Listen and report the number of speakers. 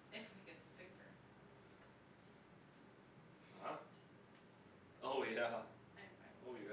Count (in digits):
2